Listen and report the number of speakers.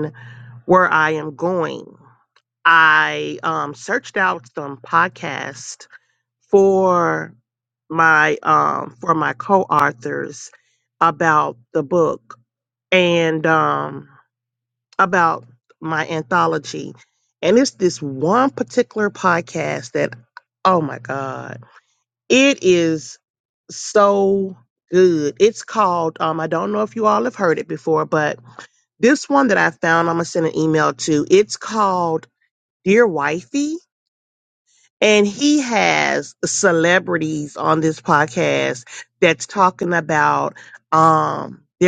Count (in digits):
1